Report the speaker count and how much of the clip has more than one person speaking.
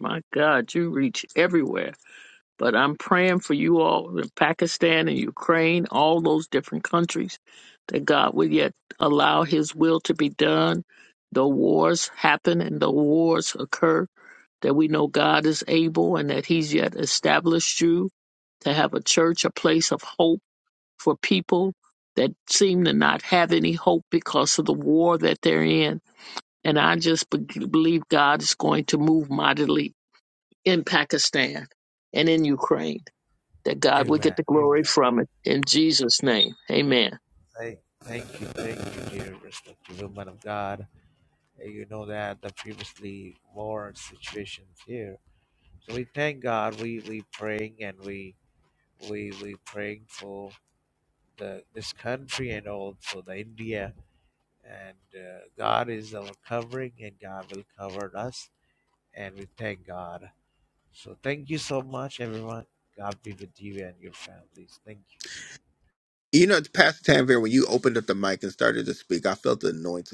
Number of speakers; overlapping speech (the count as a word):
three, about 1%